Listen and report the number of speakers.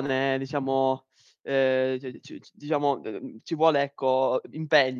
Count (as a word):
one